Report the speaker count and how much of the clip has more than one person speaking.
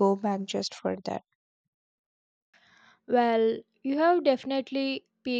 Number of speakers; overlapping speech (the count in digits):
2, no overlap